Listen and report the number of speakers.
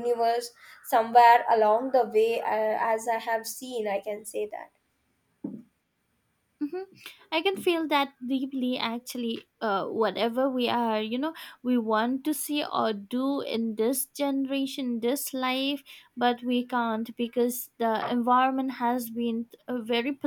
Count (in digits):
2